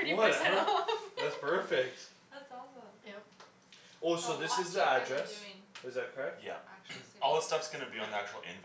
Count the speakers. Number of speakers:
four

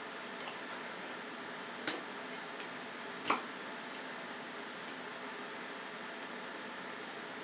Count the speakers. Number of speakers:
zero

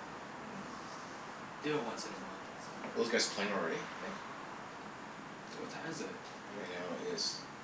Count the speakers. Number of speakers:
two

